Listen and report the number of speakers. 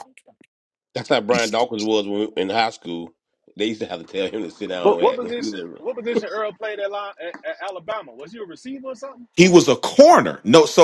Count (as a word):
three